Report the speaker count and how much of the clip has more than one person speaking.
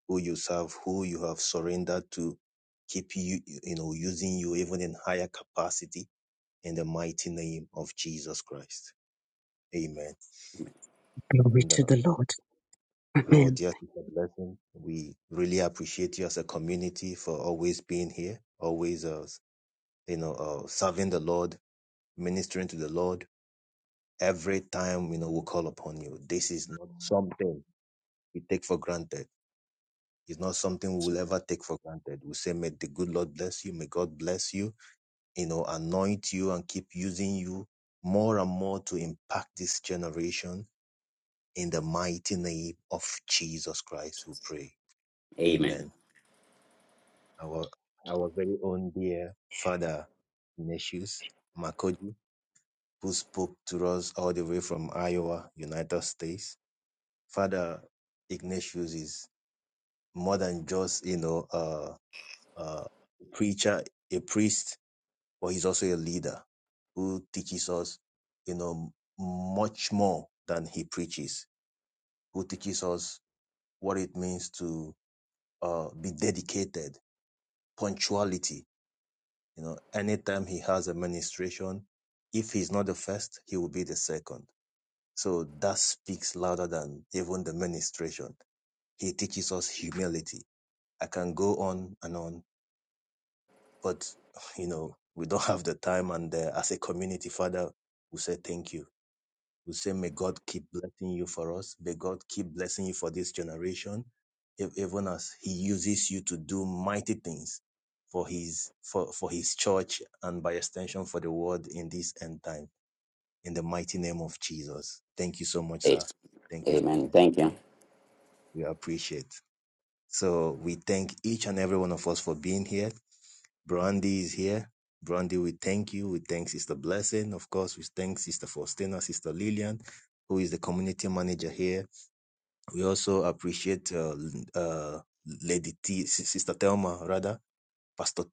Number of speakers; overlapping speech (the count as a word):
three, about 1%